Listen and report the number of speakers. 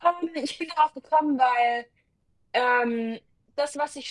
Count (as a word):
one